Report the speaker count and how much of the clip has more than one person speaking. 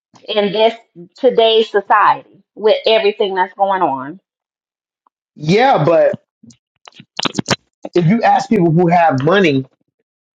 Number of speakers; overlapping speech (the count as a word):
two, no overlap